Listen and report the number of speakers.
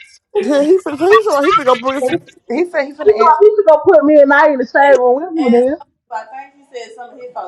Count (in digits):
3